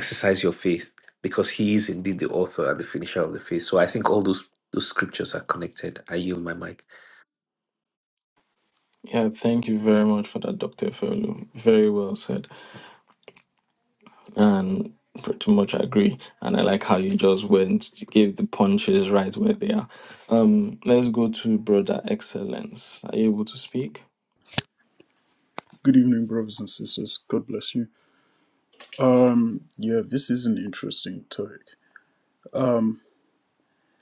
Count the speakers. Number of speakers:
3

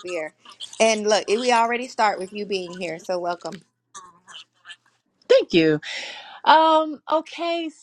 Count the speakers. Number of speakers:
2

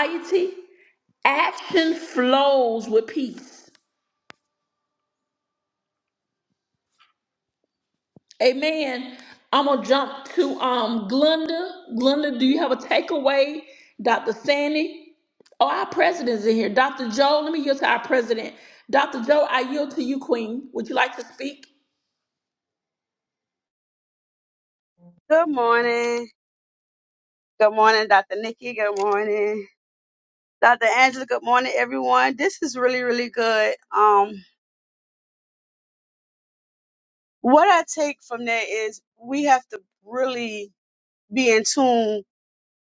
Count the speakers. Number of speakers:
2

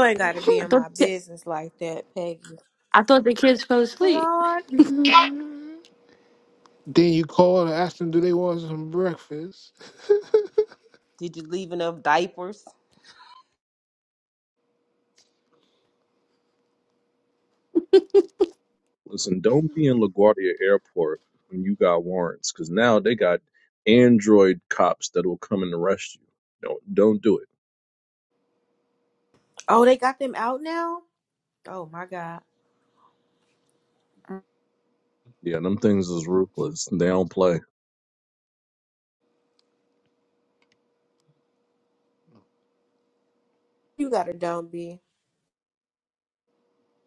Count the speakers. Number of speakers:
5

